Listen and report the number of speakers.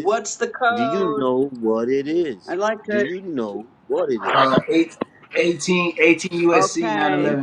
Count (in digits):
3